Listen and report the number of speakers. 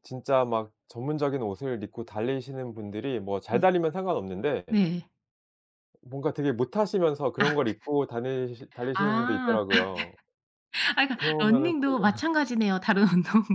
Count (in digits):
2